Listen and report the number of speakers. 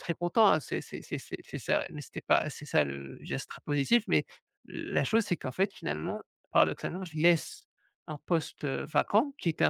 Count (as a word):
one